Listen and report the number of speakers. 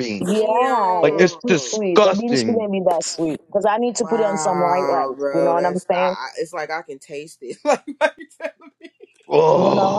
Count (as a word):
three